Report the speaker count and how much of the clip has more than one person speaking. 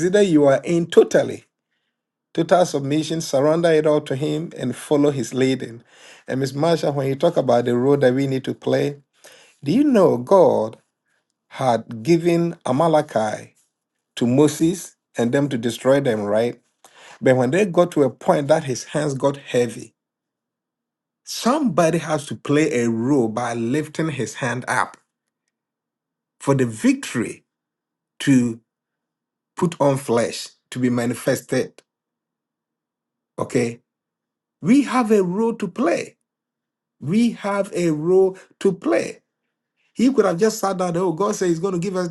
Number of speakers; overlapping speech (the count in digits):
1, no overlap